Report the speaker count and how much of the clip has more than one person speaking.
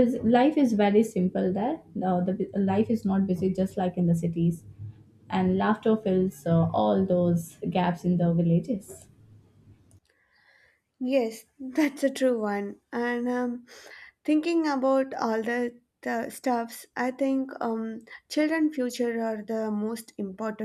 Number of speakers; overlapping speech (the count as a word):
two, no overlap